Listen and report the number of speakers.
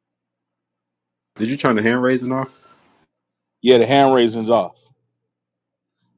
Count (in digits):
2